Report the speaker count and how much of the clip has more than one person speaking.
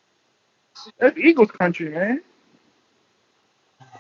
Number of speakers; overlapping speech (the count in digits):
1, no overlap